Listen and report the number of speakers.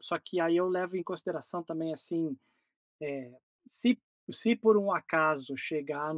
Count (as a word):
one